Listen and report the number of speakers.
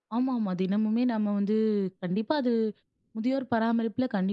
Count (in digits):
1